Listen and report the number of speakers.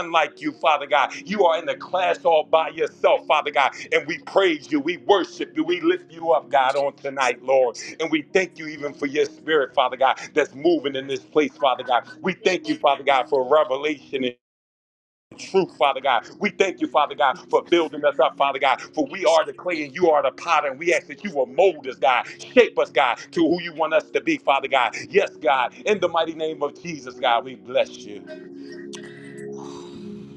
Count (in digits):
1